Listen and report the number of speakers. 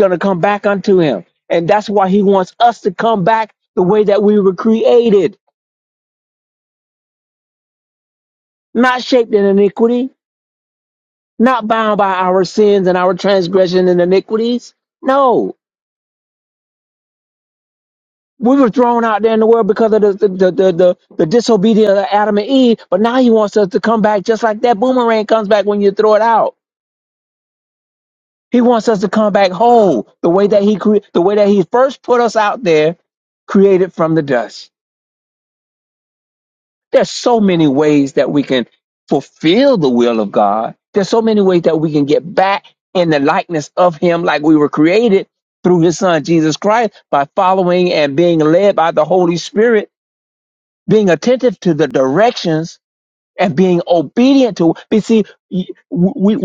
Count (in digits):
1